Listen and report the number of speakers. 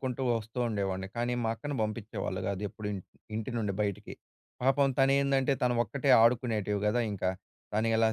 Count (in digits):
1